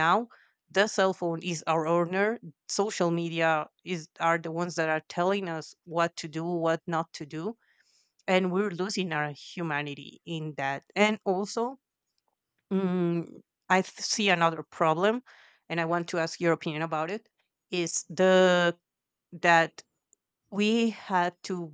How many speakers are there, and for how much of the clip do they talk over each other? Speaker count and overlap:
1, no overlap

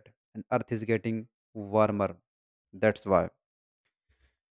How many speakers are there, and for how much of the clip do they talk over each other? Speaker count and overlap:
1, no overlap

